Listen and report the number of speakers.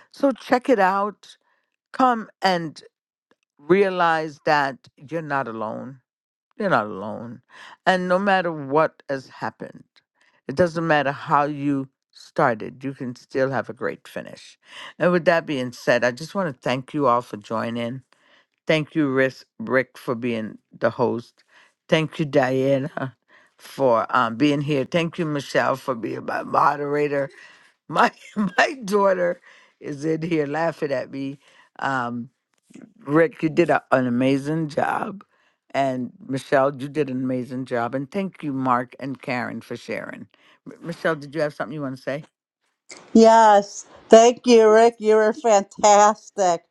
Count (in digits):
2